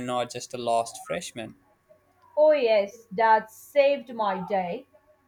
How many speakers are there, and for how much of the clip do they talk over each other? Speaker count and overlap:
2, no overlap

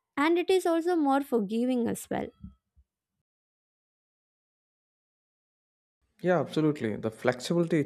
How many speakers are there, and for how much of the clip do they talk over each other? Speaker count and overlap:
2, no overlap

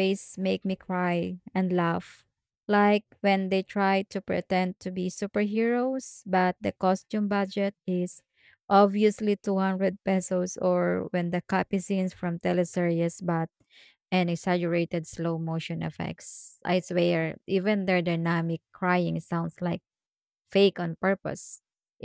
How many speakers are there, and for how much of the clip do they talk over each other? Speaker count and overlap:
1, no overlap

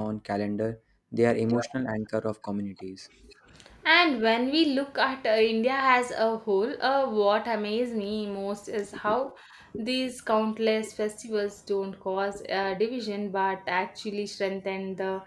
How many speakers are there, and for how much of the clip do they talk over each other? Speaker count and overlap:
2, no overlap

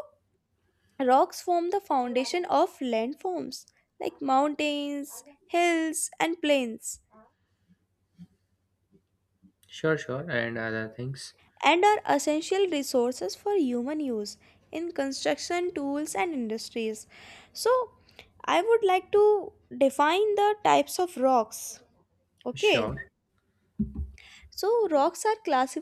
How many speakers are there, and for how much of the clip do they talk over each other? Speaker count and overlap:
2, about 1%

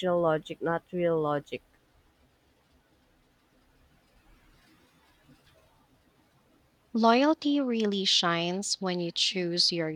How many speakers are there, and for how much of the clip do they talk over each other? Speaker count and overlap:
2, no overlap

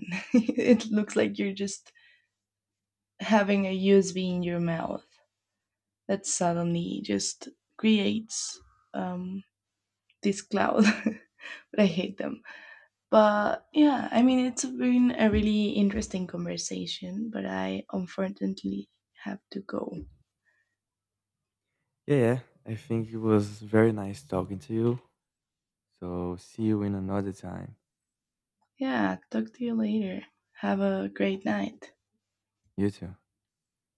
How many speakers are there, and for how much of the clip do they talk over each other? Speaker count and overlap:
2, no overlap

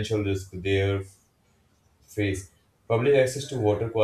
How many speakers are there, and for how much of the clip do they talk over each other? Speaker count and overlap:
1, no overlap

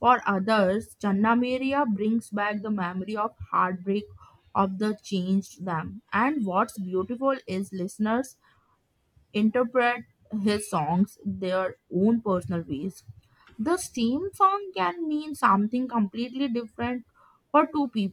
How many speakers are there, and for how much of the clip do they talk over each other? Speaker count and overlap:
1, no overlap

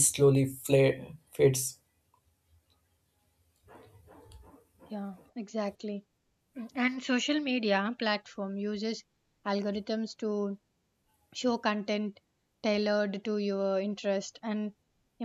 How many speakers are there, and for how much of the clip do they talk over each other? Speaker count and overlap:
2, no overlap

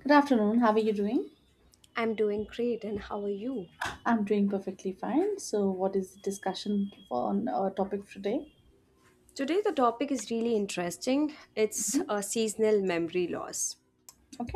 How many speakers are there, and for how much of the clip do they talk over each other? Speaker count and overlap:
2, about 2%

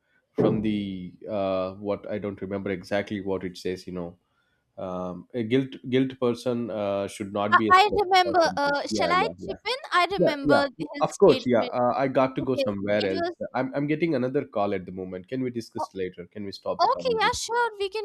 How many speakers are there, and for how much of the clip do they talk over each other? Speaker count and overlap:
2, about 24%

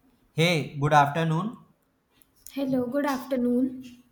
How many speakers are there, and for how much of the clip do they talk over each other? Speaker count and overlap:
2, no overlap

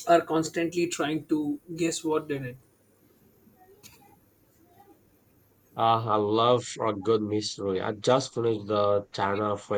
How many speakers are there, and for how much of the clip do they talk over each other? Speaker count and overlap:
2, no overlap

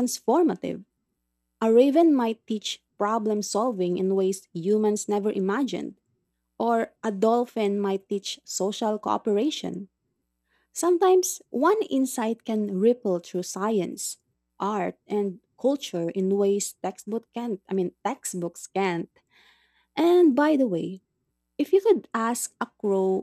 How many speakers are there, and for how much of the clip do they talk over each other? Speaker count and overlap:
1, no overlap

